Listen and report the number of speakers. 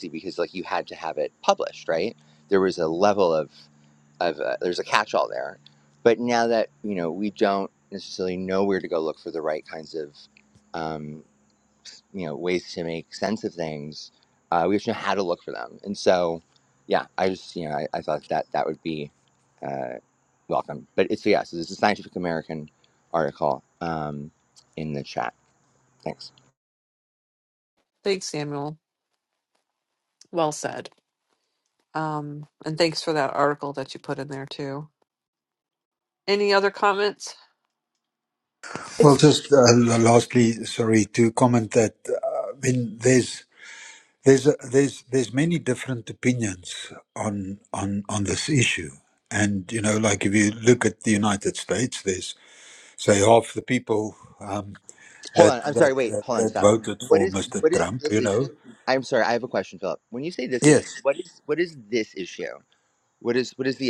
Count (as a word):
three